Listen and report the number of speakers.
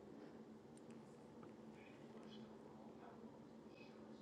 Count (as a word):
zero